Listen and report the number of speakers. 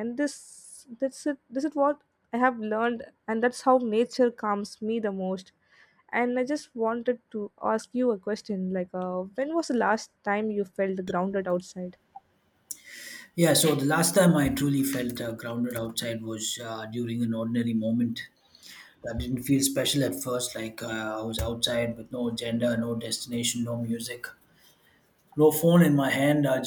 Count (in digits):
2